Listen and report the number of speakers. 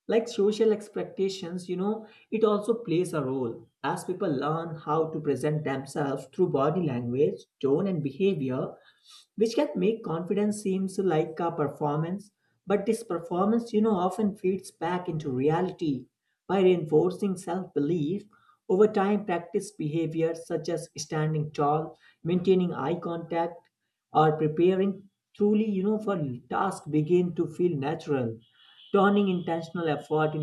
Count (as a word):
one